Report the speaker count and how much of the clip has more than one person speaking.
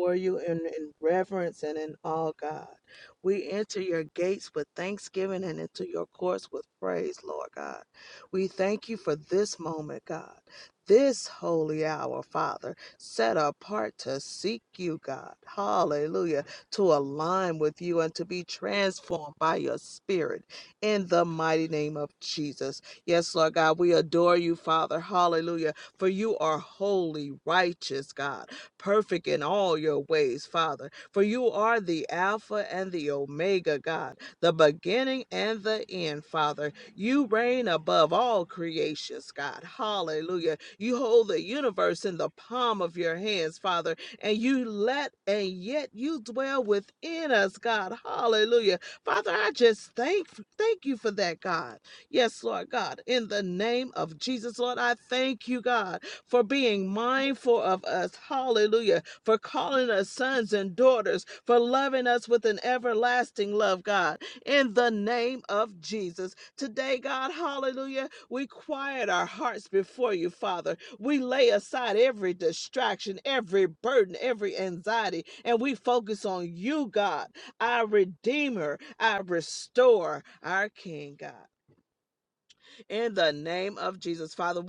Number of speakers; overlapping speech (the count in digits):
1, no overlap